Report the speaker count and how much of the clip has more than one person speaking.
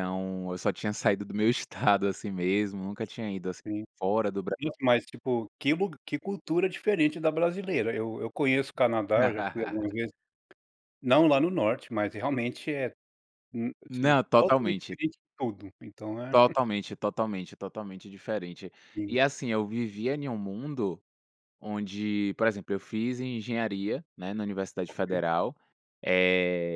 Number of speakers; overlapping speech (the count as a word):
two, about 5%